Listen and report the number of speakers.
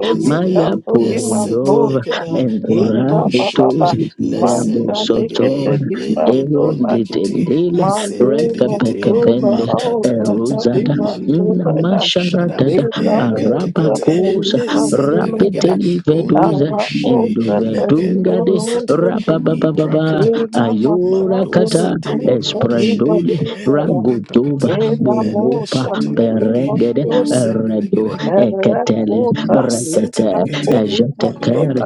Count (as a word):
three